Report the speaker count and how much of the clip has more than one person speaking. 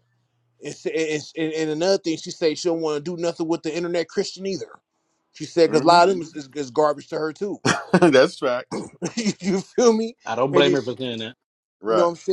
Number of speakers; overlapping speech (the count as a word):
three, about 6%